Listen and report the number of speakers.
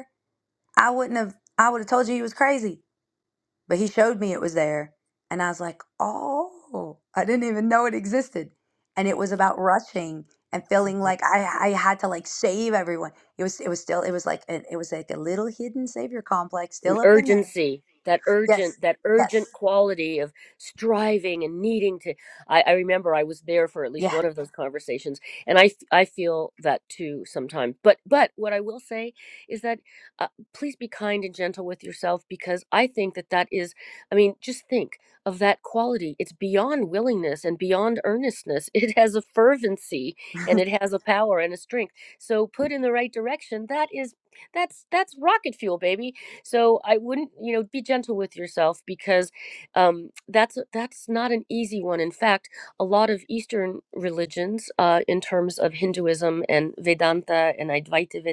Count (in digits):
2